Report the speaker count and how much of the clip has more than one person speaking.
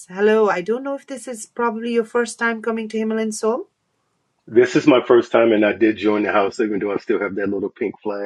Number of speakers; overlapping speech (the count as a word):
two, no overlap